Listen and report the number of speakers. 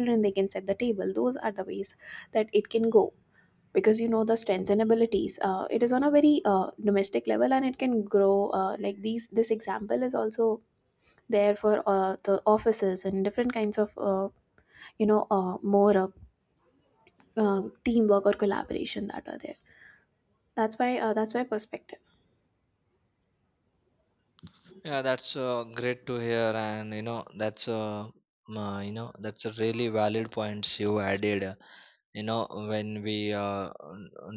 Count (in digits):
2